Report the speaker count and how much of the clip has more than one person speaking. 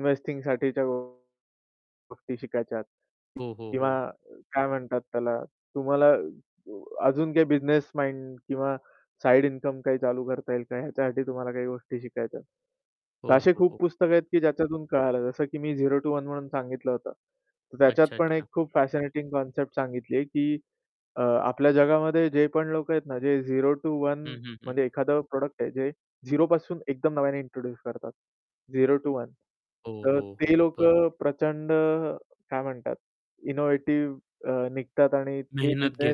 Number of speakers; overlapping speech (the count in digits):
2, about 8%